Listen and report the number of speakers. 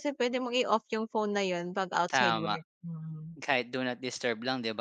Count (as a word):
two